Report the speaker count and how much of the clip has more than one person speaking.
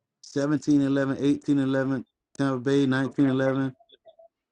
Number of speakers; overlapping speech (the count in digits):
1, no overlap